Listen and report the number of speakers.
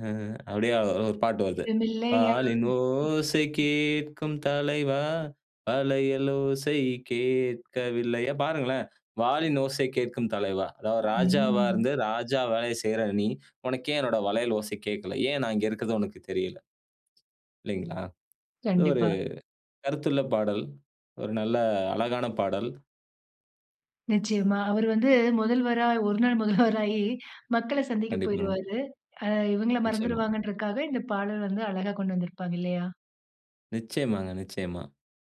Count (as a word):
two